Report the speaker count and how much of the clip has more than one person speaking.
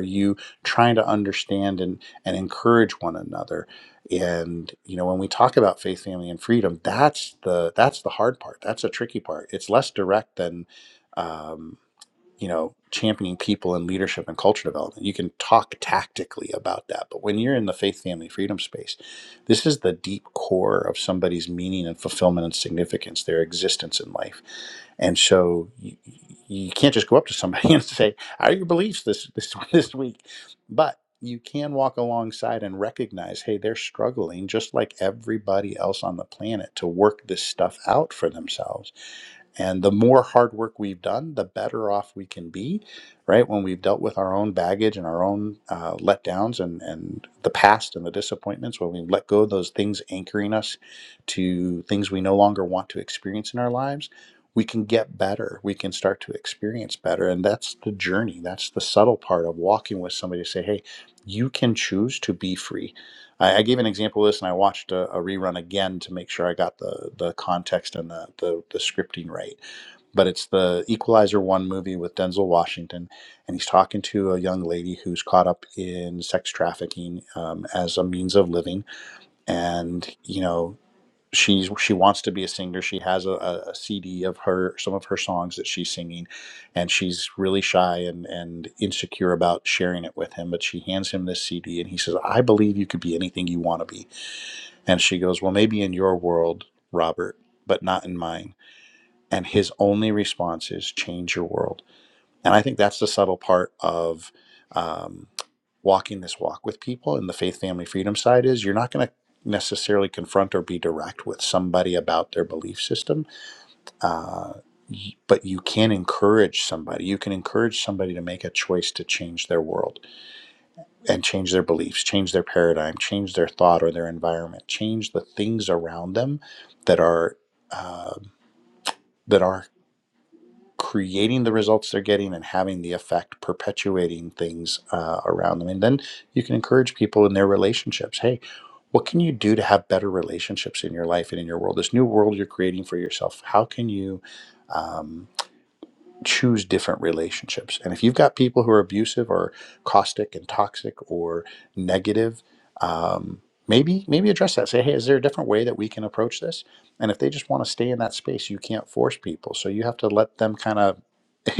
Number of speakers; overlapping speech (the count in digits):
1, no overlap